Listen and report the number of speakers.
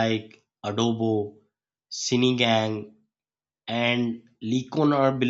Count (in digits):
1